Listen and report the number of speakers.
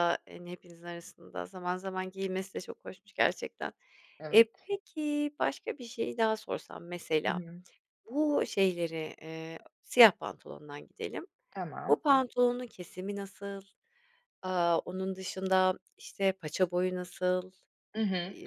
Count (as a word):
two